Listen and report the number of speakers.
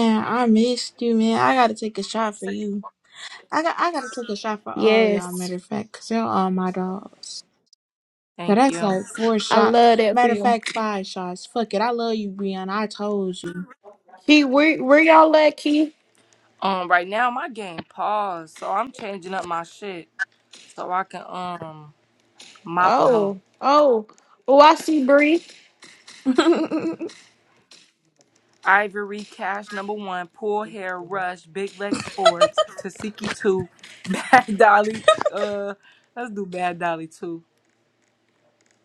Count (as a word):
three